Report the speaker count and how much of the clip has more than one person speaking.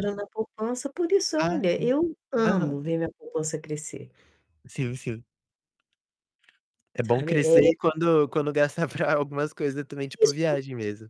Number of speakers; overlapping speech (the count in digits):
2, about 17%